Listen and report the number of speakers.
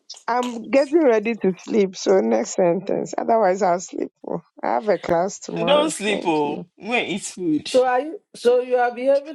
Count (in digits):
3